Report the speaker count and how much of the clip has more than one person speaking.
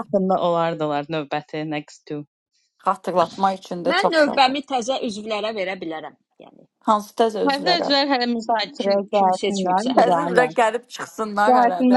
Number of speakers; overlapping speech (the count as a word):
three, about 29%